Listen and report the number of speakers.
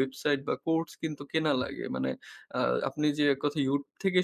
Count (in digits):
1